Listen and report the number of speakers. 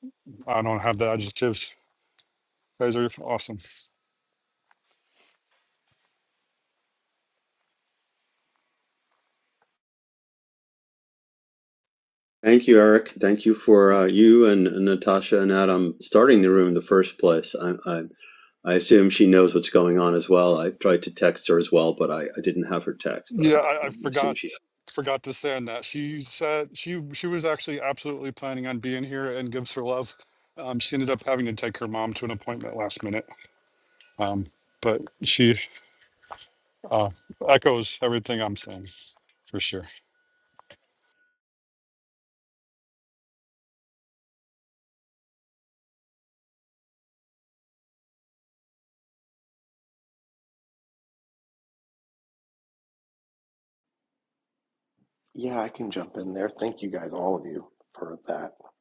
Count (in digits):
3